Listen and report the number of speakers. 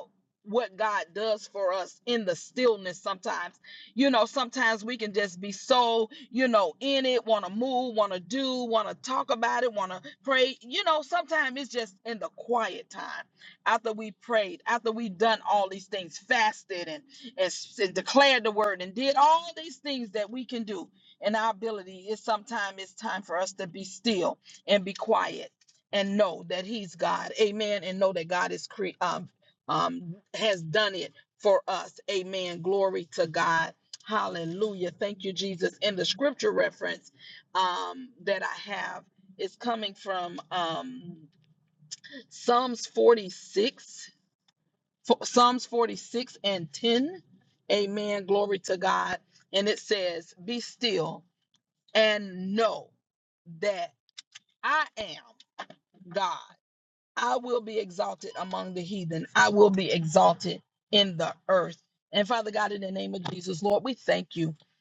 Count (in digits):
1